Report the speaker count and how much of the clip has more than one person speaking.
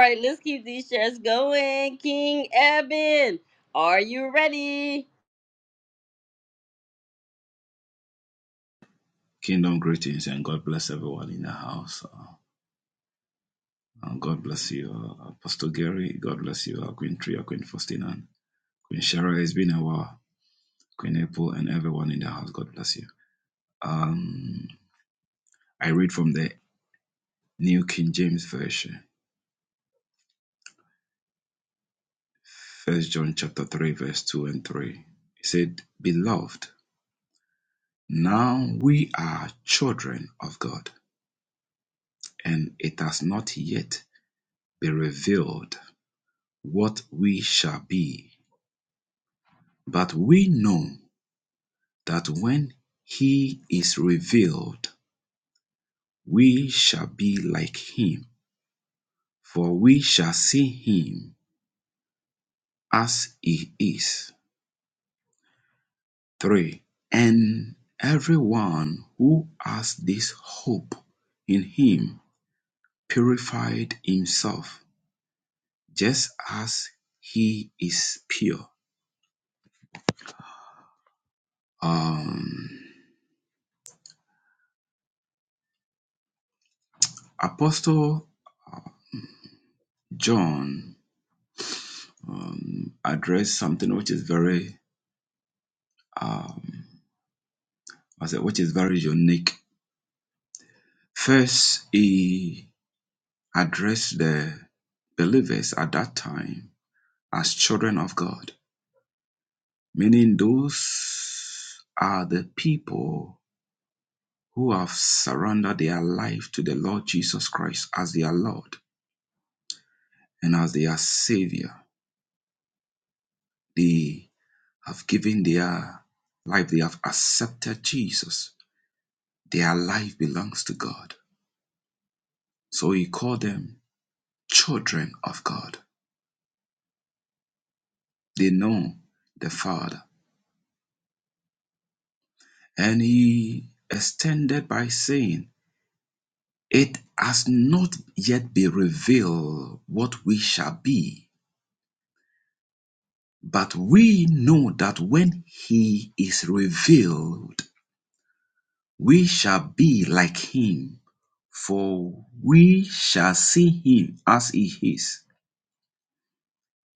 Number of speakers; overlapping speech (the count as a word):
two, no overlap